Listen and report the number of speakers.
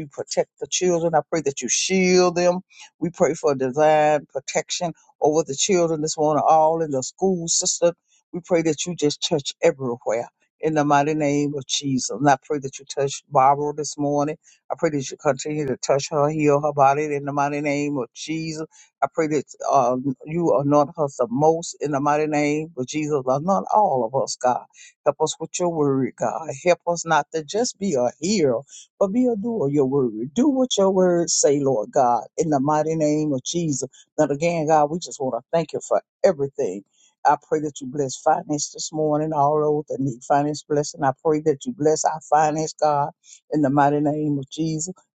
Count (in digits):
1